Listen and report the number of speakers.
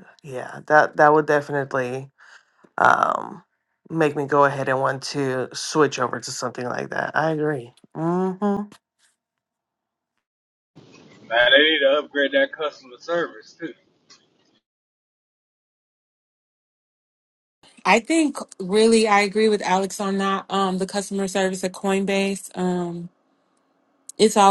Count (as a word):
three